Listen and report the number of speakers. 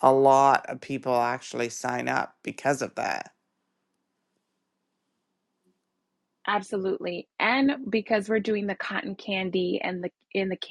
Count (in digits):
2